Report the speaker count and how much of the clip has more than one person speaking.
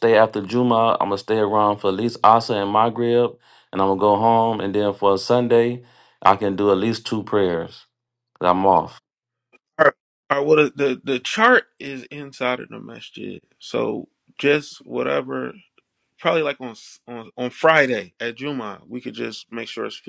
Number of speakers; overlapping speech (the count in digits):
2, no overlap